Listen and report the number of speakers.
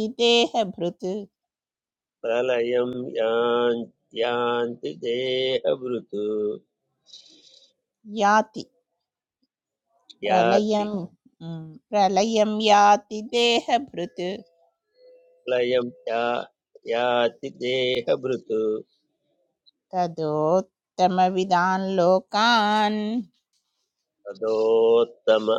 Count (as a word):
two